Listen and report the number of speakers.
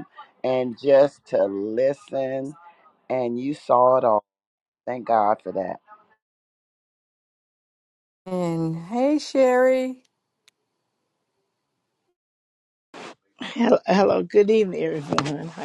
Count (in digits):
3